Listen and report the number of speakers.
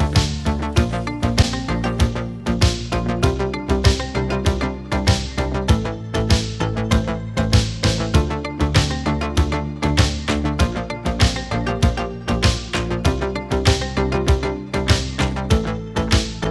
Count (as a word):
zero